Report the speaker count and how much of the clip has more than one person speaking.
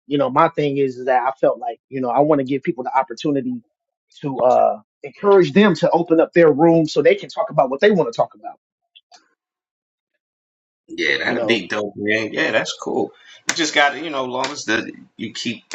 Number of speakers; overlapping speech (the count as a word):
two, about 2%